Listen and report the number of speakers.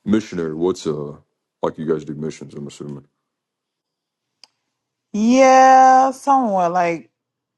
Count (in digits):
2